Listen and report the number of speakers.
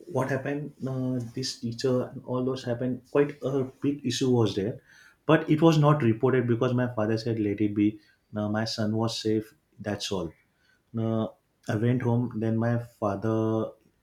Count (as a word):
one